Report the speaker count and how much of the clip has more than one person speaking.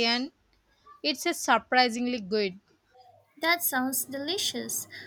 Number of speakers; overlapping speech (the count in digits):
2, no overlap